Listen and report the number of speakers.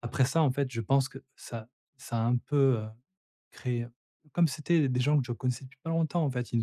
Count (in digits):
1